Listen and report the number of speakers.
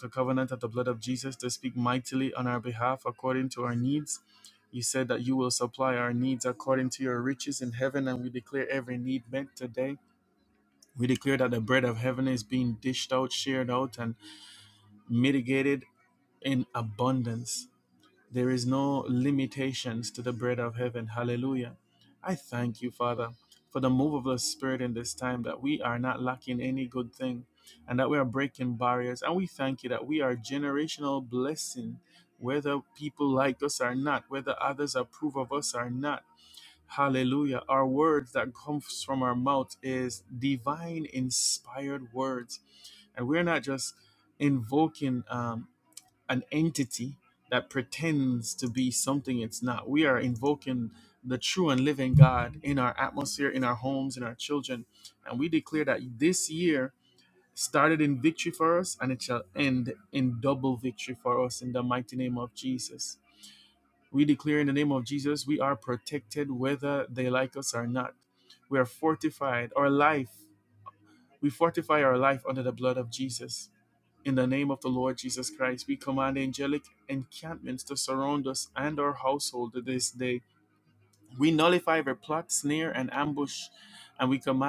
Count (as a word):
one